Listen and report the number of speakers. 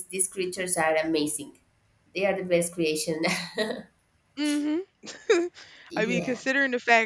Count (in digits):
2